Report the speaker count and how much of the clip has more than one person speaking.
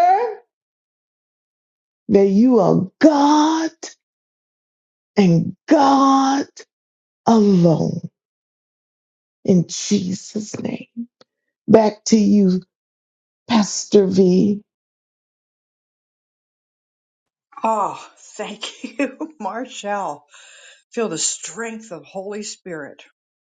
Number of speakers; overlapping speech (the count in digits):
2, no overlap